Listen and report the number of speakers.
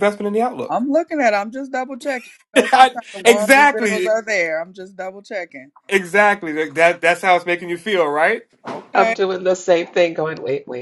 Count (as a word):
three